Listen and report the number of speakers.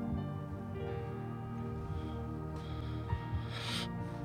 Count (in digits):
0